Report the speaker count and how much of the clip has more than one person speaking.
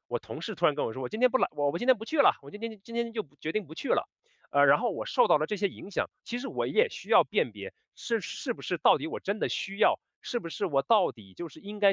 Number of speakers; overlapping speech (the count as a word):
one, no overlap